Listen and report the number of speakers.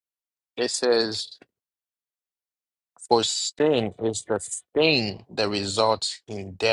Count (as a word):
one